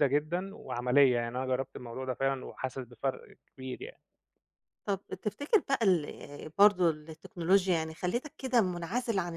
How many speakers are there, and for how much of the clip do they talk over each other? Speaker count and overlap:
two, no overlap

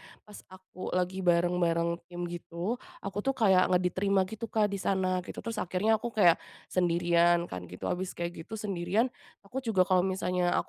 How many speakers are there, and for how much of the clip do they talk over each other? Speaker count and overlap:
one, no overlap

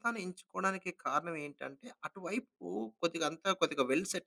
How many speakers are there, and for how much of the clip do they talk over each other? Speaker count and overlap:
one, no overlap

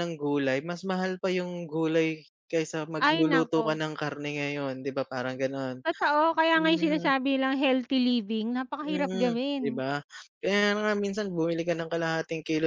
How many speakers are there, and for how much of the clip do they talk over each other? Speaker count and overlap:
two, about 18%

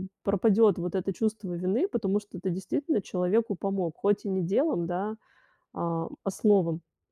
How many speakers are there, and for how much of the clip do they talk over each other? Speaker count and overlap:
one, no overlap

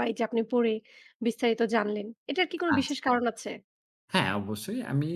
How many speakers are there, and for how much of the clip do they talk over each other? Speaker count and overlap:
two, about 4%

